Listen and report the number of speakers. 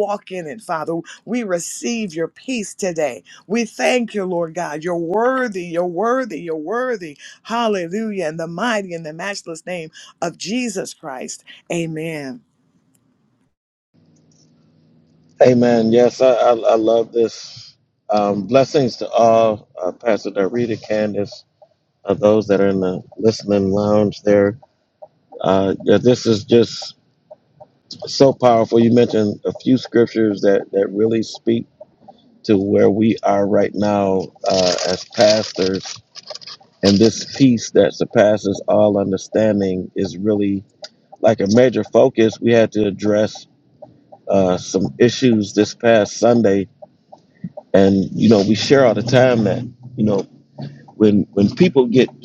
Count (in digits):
2